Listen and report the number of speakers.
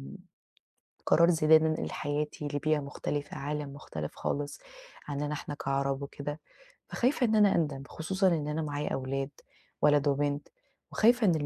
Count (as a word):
one